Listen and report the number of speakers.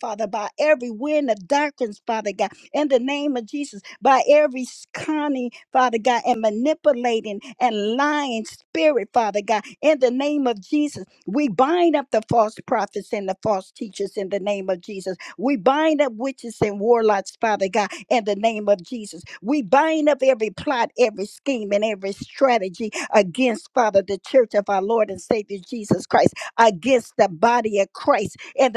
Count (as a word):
one